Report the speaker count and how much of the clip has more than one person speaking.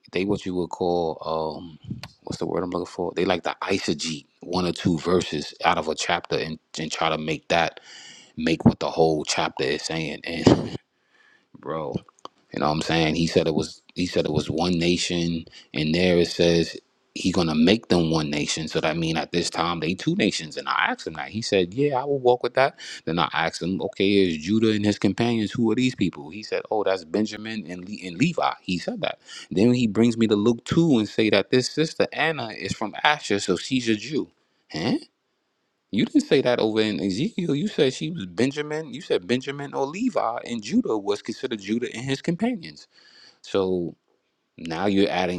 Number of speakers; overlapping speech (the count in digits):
1, no overlap